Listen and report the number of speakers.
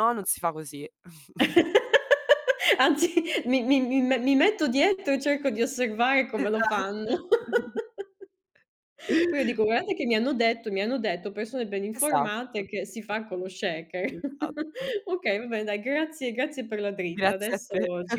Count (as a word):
two